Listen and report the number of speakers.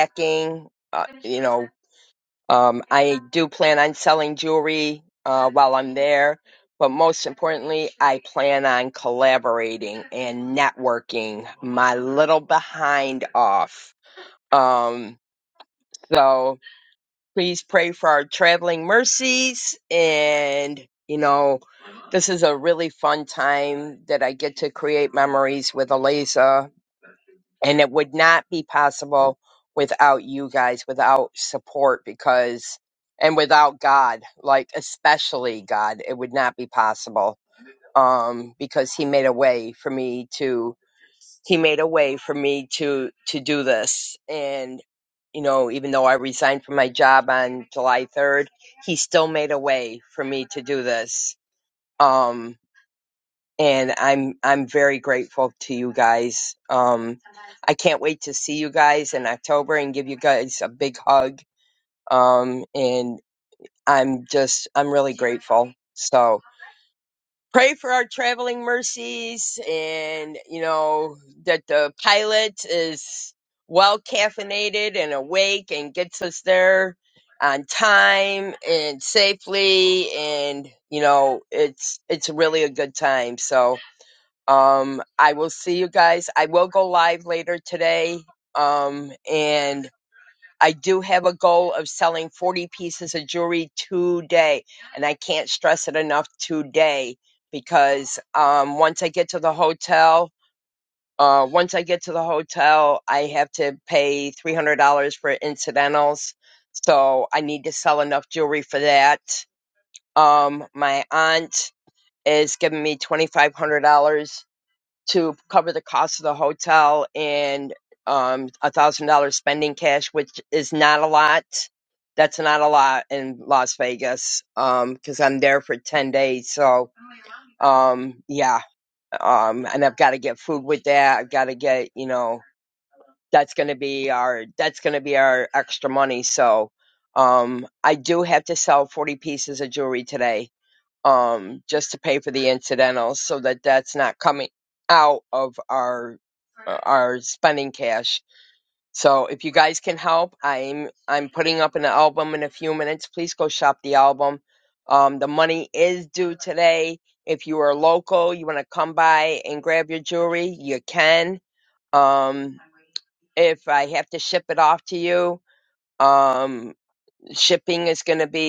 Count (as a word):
one